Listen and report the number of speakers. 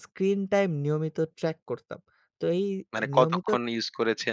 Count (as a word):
two